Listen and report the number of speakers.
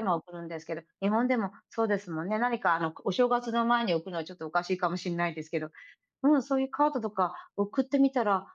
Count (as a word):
one